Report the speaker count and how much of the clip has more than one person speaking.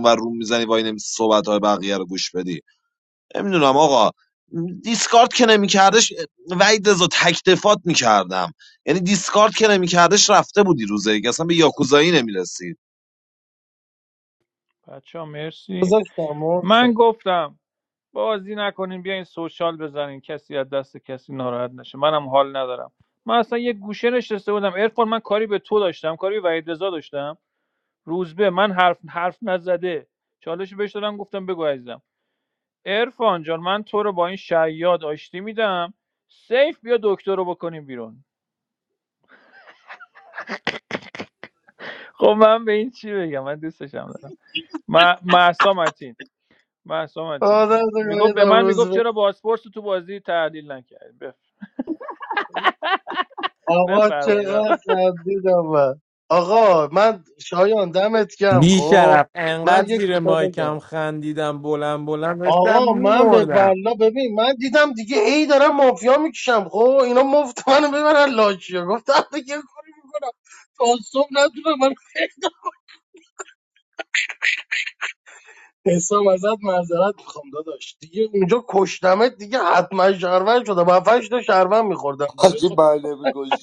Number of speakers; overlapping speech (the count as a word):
five, about 7%